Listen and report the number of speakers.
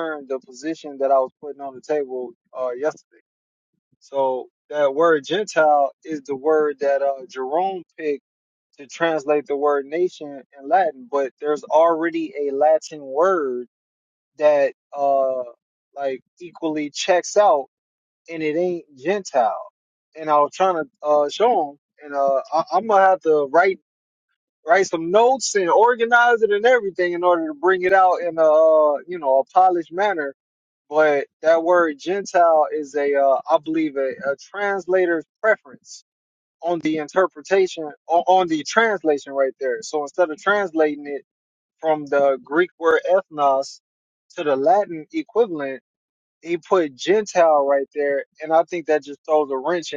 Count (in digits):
1